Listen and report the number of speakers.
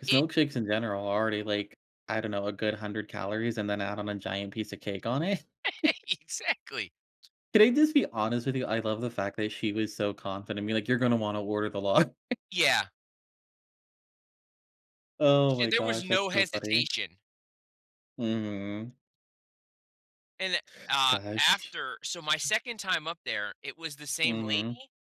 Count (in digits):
2